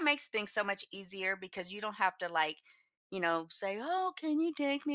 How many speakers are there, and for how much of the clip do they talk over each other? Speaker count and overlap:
one, no overlap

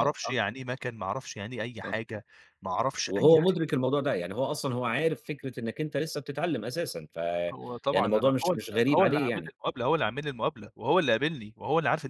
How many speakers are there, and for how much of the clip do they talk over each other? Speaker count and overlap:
two, about 16%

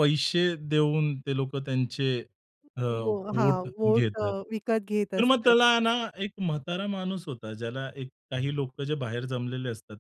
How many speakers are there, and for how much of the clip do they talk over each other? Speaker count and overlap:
two, about 14%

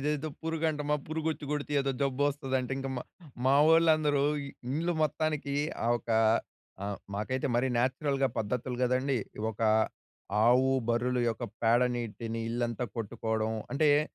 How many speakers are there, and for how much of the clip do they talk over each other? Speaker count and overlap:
one, no overlap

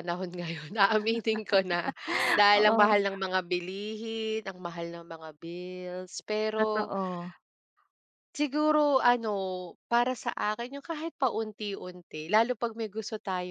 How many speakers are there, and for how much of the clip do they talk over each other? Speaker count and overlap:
two, about 6%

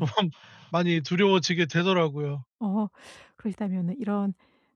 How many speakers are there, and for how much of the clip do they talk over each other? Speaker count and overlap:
two, about 2%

